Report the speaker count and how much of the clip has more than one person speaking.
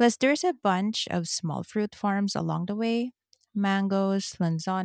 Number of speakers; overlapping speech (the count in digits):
1, no overlap